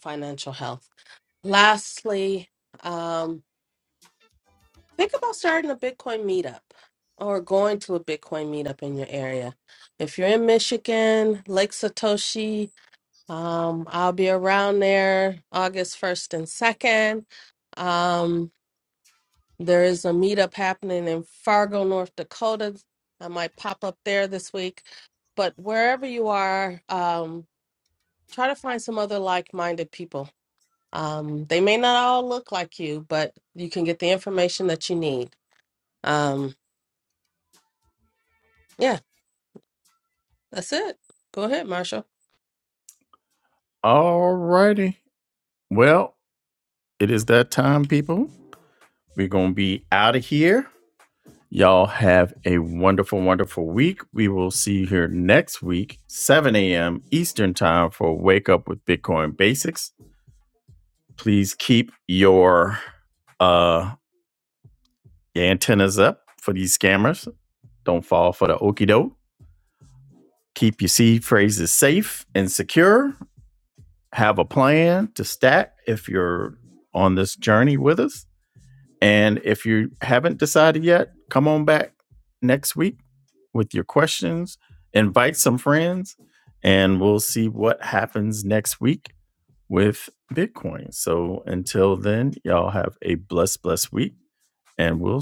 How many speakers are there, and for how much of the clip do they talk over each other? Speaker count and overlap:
2, no overlap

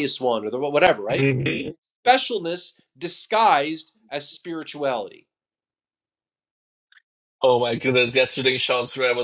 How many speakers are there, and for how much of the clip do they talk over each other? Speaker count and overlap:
2, about 2%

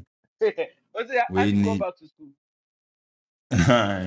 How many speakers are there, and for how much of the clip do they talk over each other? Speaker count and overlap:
2, about 13%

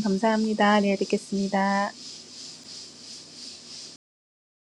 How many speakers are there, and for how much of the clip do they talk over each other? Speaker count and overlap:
1, no overlap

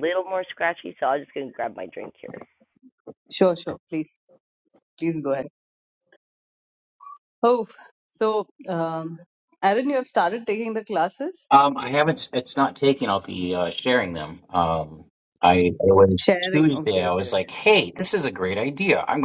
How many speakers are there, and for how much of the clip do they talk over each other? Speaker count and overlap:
3, about 7%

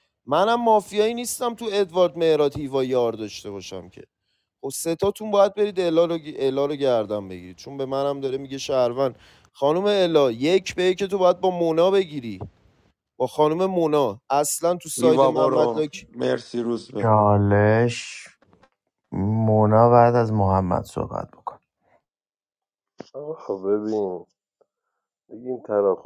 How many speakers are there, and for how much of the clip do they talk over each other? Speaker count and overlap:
4, about 4%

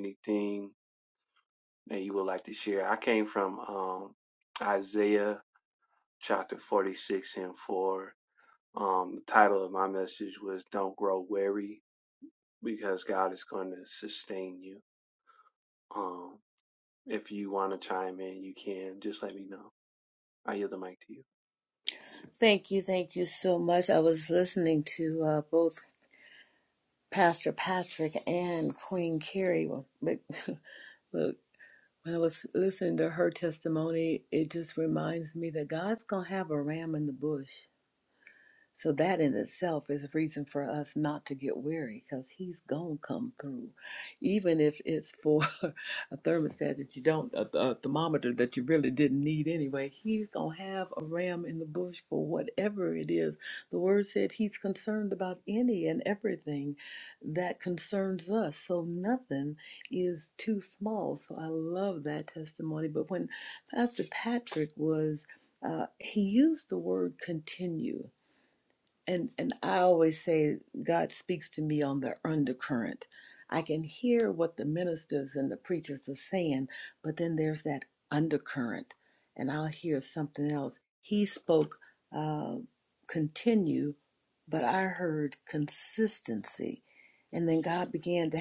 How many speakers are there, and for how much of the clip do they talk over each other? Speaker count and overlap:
2, no overlap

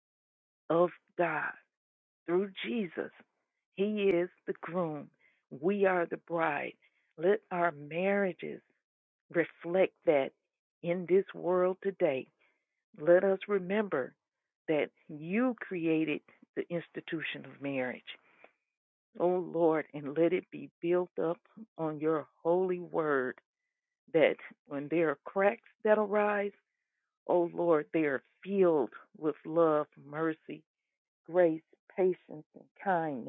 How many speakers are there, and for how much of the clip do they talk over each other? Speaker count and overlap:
1, no overlap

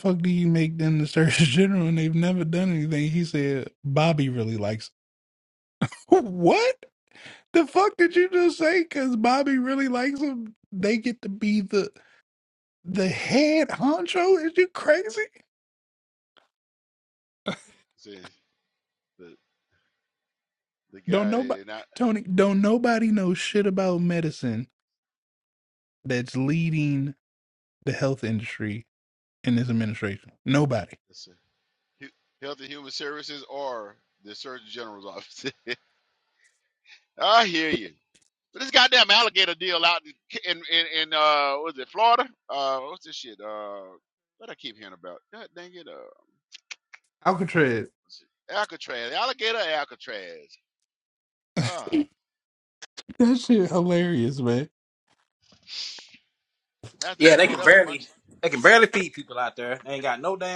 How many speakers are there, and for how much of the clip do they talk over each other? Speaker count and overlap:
3, about 2%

